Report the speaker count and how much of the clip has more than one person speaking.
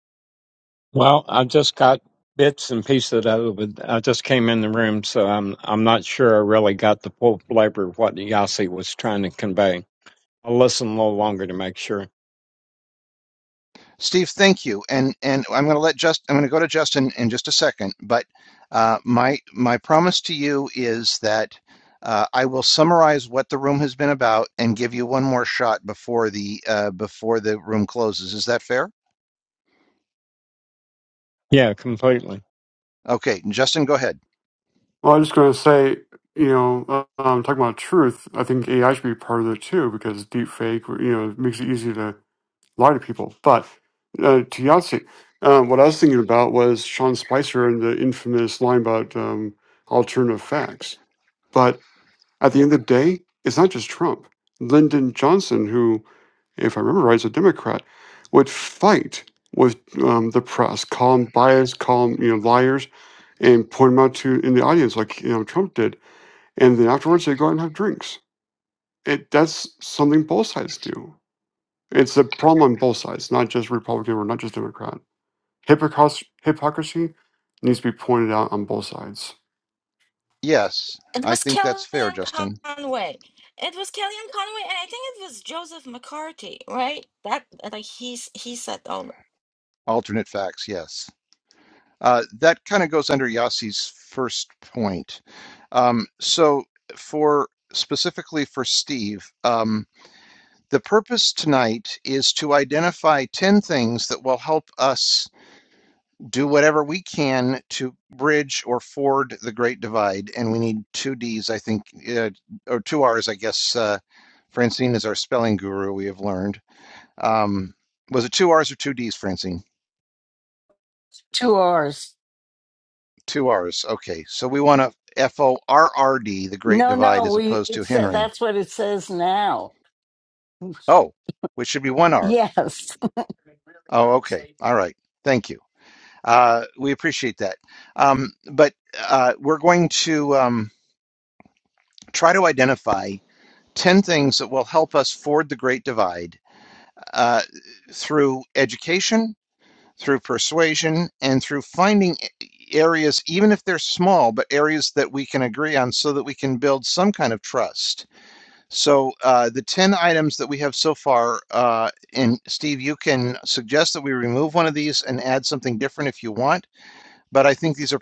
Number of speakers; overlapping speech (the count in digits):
5, about 2%